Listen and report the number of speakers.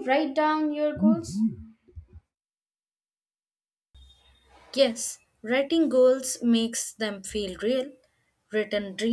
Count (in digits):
2